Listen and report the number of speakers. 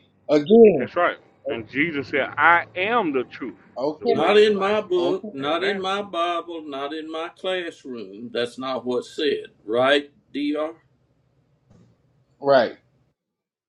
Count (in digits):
3